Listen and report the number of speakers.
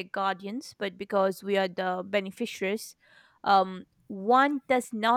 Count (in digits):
1